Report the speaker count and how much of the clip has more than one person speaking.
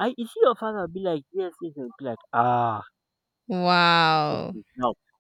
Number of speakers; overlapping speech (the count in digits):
2, about 5%